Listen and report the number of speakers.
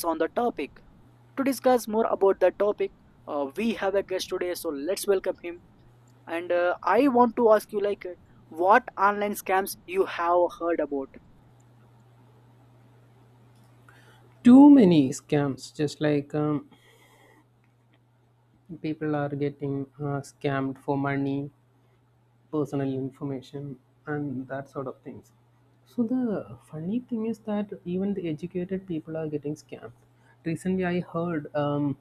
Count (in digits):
2